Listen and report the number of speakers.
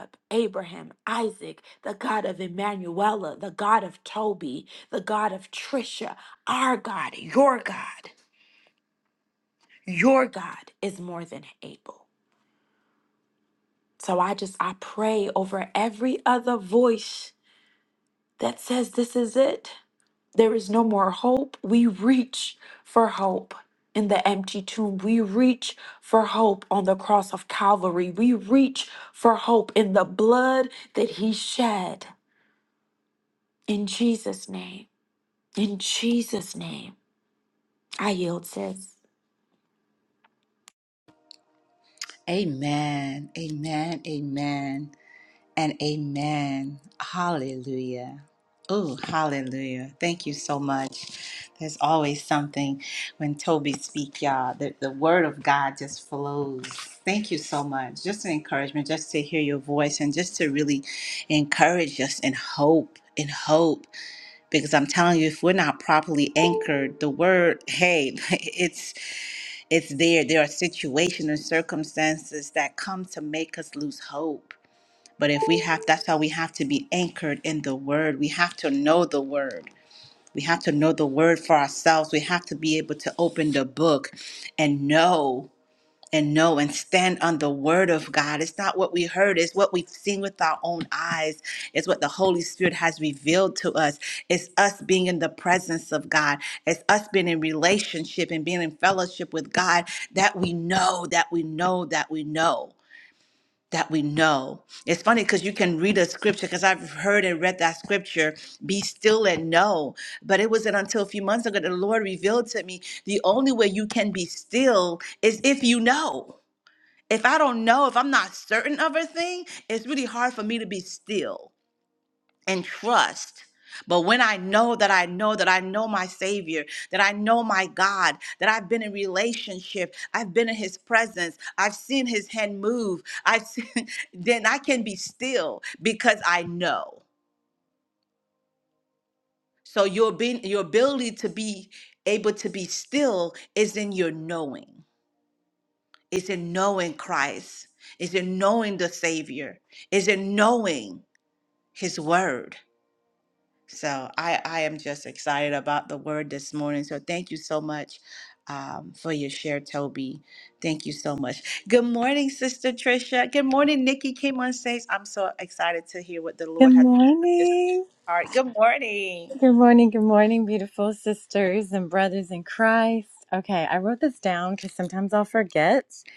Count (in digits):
3